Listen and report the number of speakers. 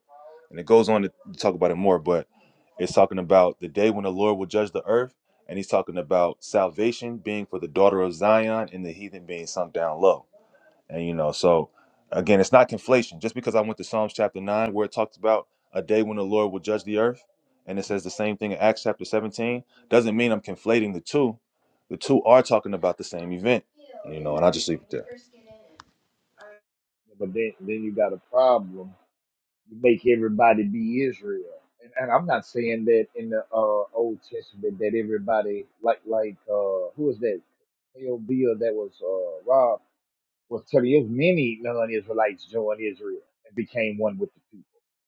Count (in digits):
2